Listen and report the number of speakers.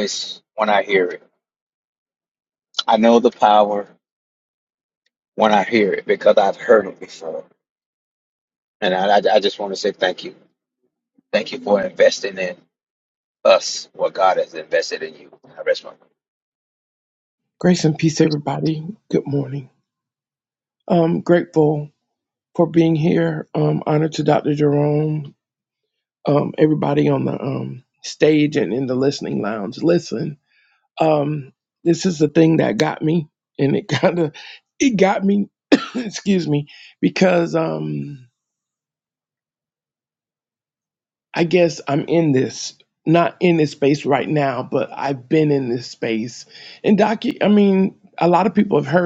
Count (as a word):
two